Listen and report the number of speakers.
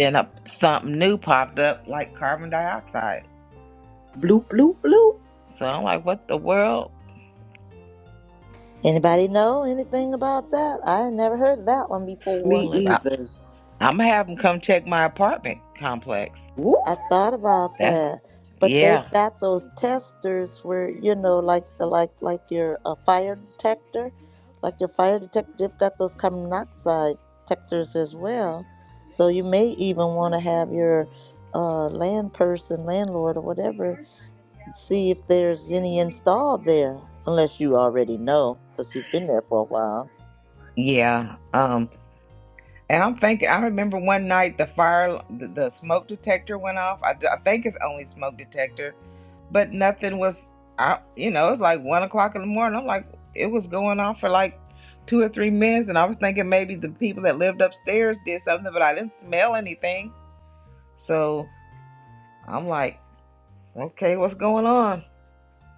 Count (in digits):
3